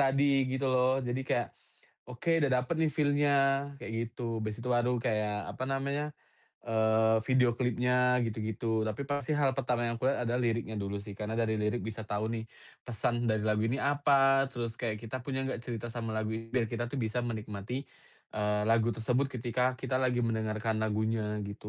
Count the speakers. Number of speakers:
one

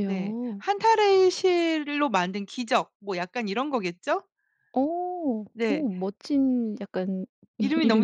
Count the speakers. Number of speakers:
two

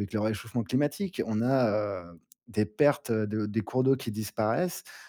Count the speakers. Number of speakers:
one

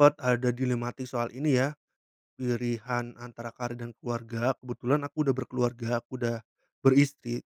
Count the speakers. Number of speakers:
one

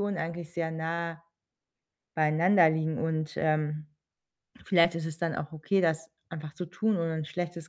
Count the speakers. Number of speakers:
one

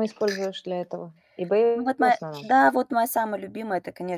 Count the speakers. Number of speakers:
two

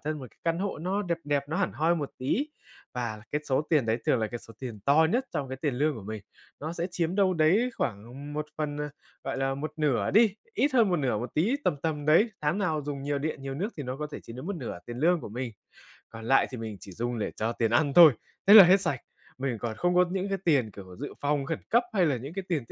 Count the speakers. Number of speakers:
one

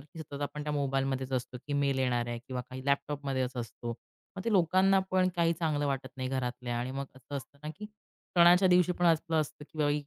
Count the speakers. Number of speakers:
one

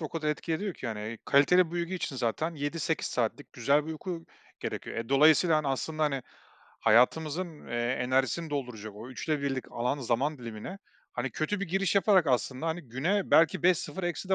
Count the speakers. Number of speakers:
one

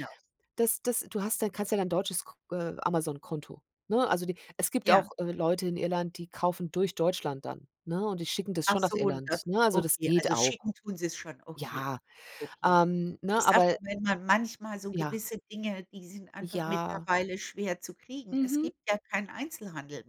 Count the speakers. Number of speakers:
two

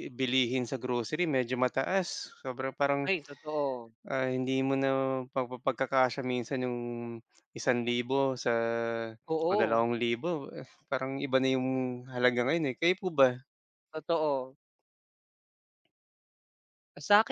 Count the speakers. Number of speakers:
two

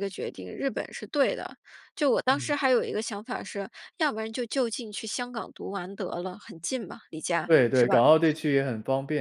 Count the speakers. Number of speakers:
two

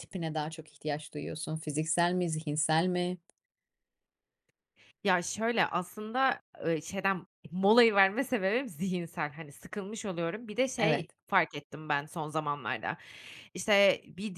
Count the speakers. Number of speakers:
two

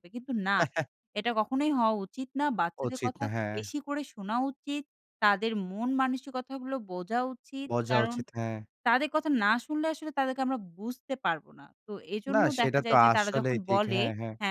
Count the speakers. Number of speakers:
two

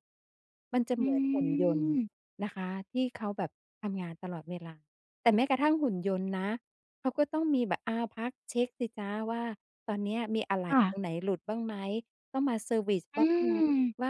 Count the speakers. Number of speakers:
two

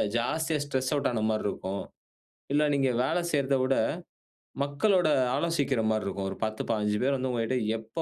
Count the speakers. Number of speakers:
one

